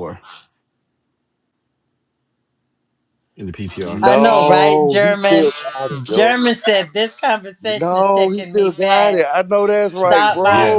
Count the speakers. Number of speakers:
3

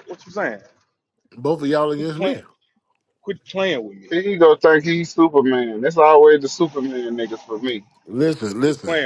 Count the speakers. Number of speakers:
3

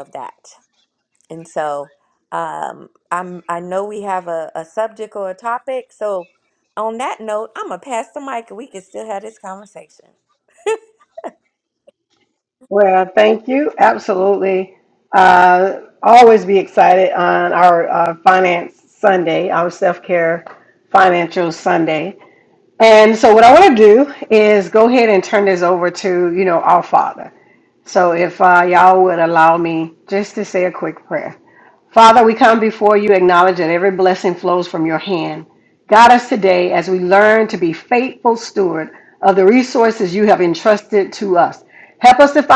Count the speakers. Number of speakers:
2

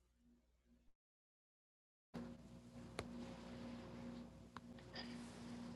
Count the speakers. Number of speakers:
0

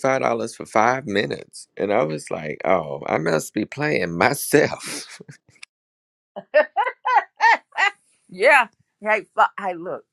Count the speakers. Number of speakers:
2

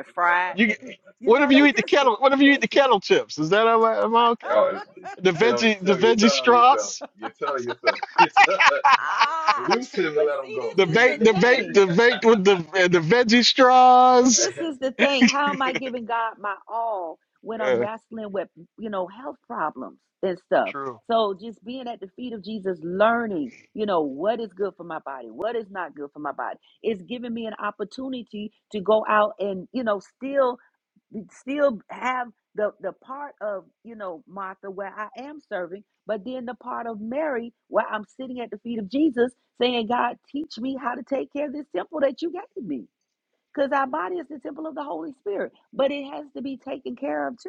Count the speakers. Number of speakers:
3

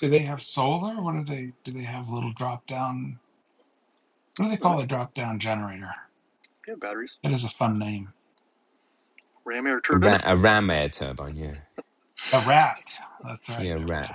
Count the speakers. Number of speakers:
3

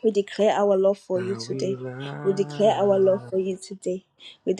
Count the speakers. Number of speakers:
2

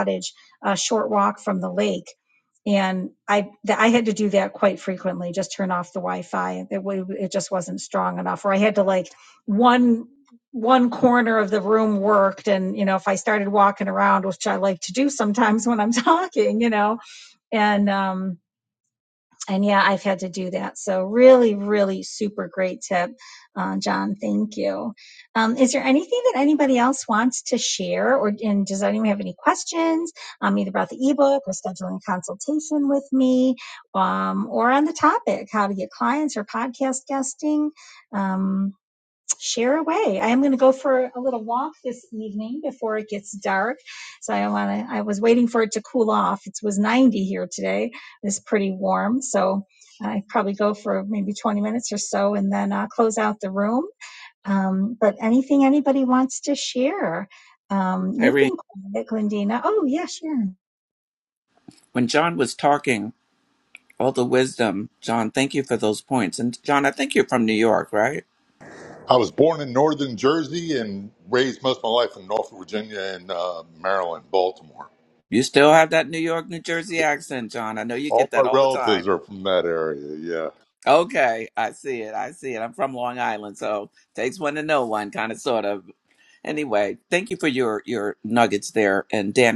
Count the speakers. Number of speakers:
3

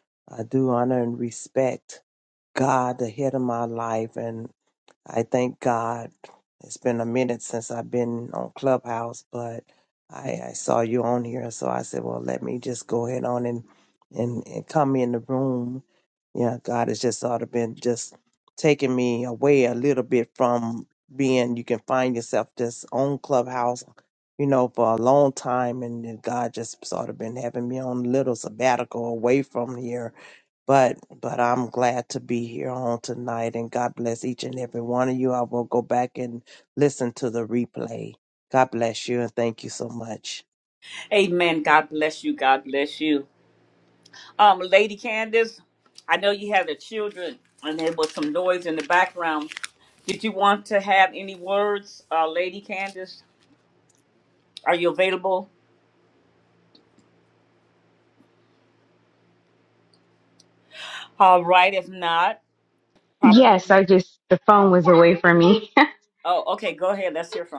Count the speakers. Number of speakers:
3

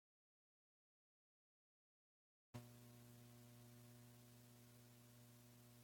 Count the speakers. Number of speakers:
0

